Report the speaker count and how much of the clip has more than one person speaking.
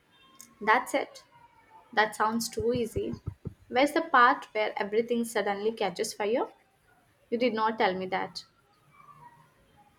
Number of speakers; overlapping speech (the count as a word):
one, no overlap